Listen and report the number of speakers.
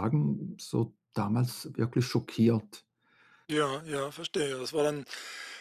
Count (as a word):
two